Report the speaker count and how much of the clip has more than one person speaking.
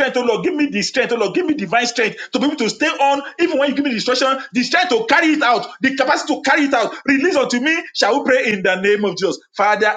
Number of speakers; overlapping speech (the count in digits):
1, no overlap